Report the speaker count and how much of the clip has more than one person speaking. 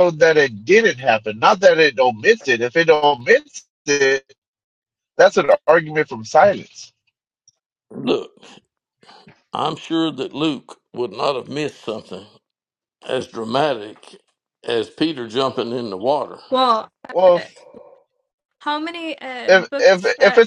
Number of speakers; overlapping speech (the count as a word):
three, about 5%